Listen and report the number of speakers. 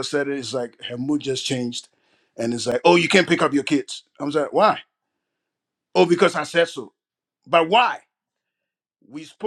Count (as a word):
one